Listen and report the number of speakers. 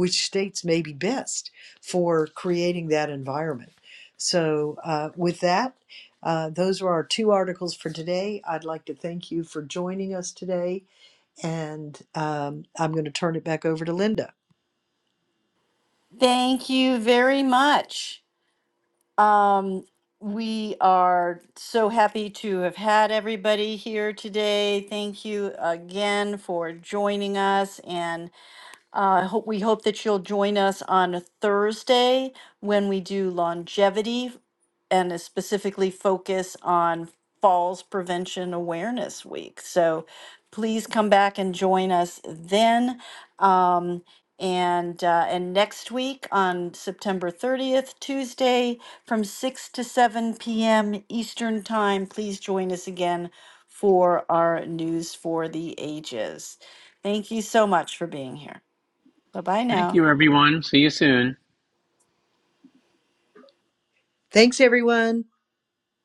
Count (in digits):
3